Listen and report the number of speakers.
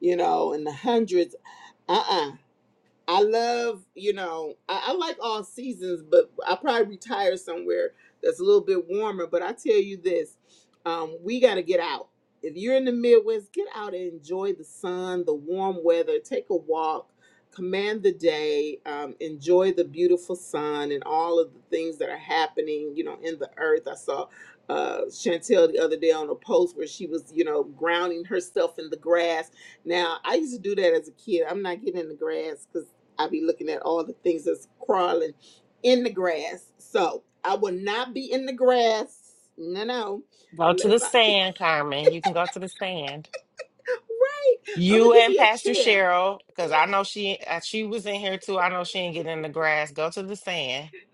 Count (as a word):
two